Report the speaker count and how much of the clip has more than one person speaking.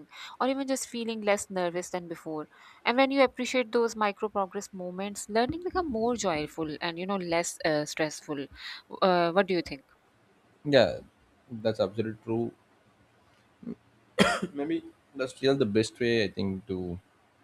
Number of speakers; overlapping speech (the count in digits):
2, no overlap